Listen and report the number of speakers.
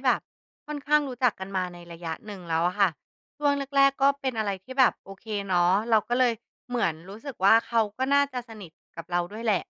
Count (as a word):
one